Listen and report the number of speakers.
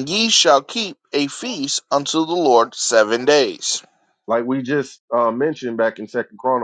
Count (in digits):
2